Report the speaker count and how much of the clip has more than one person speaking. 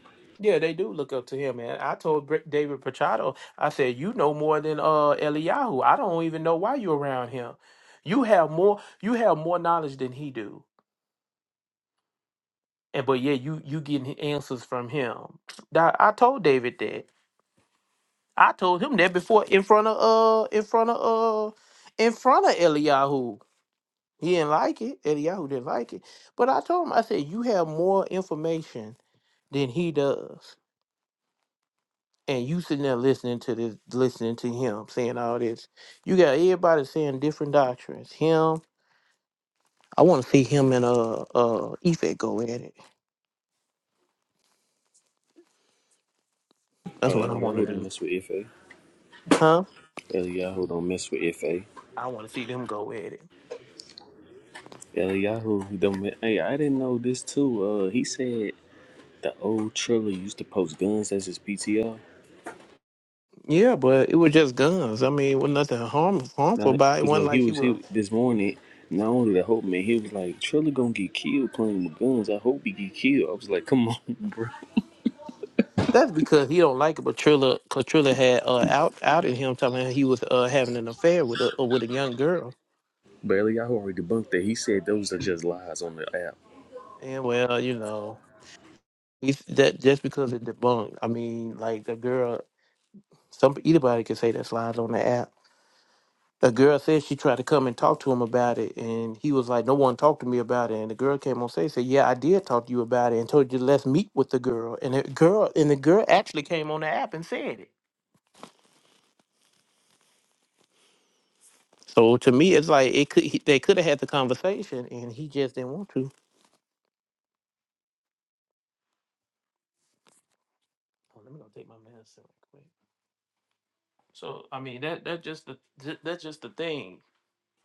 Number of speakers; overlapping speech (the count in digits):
2, about 2%